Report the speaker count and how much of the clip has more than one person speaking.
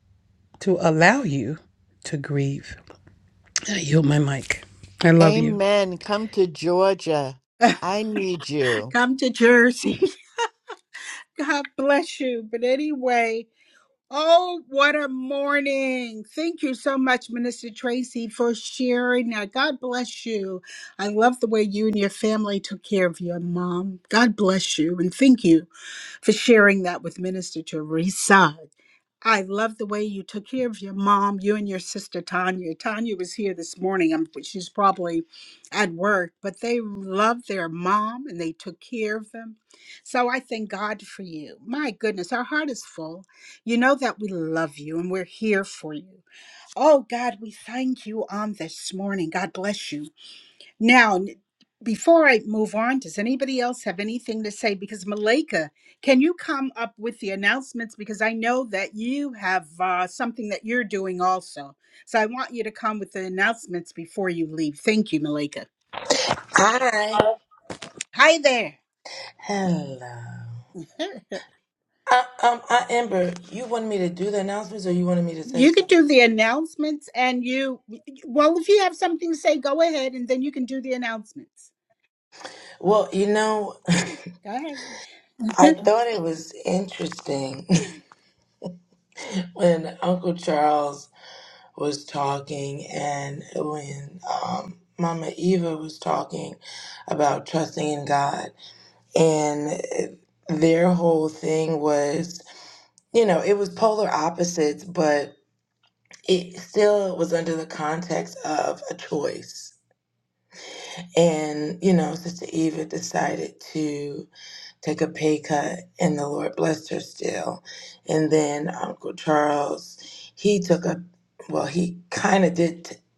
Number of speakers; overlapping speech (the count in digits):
4, about 1%